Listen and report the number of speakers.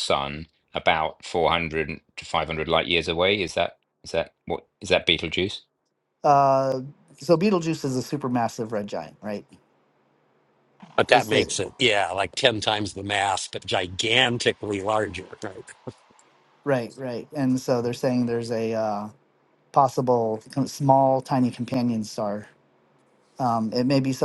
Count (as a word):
three